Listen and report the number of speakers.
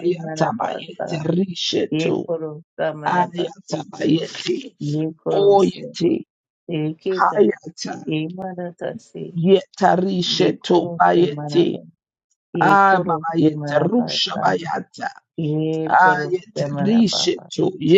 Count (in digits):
2